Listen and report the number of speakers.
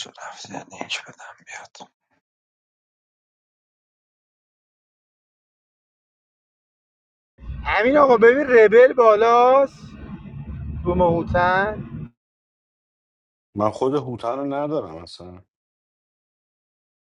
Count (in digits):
3